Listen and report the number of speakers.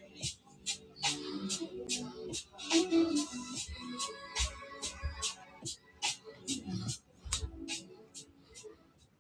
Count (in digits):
0